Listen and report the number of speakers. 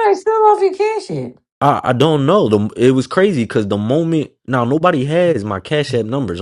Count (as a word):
two